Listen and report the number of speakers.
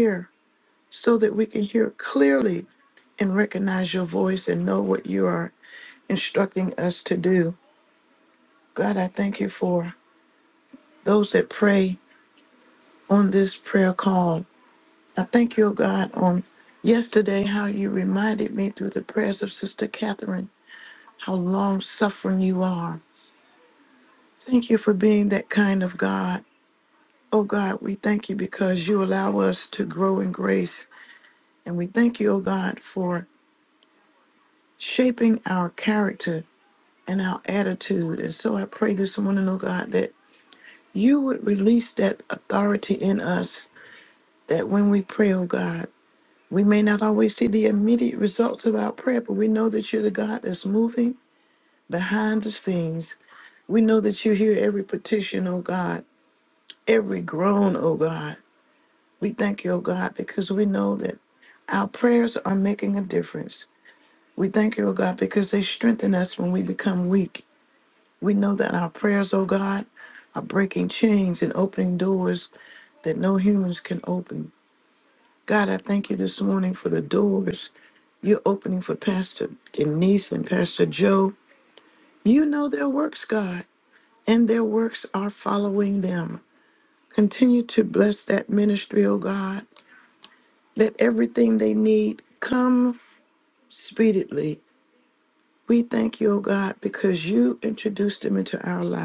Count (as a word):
one